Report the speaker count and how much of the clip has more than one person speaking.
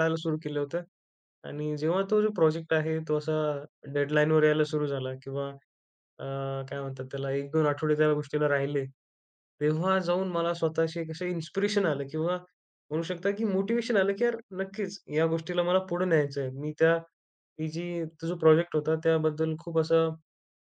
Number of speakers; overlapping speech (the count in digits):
1, no overlap